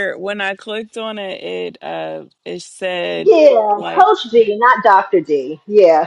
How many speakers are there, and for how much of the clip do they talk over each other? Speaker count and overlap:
2, about 5%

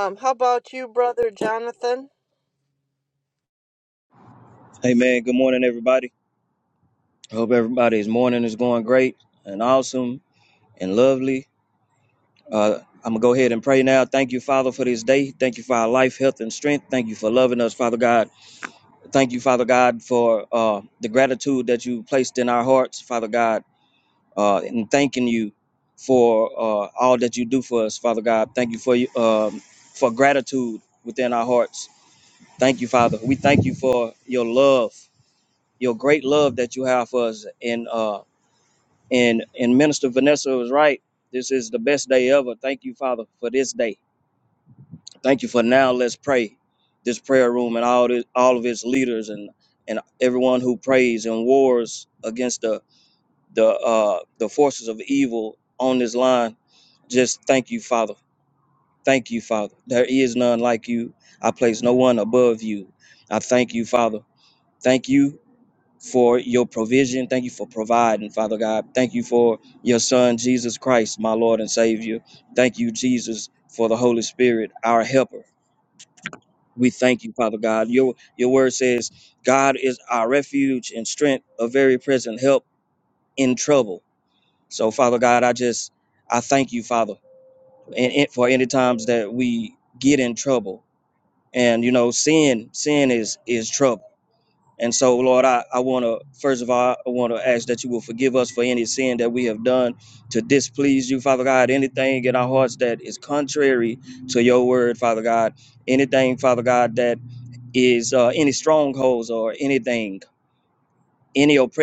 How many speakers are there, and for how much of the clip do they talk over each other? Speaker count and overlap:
2, no overlap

